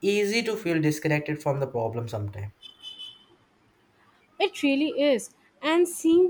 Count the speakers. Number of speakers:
2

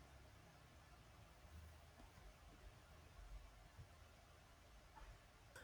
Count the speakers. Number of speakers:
0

